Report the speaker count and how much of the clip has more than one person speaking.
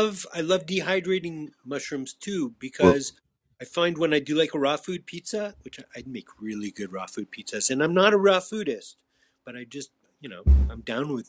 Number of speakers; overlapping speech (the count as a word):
one, no overlap